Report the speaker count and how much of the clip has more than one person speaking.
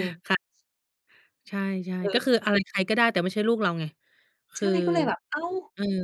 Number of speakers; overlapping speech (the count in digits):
2, about 6%